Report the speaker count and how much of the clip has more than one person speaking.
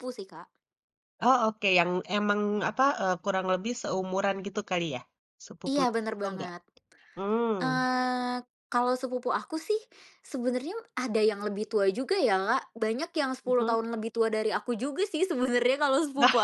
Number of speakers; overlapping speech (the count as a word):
two, about 8%